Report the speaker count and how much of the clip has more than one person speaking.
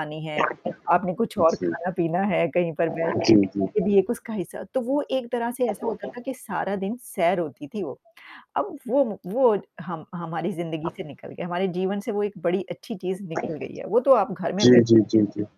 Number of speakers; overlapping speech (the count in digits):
2, about 4%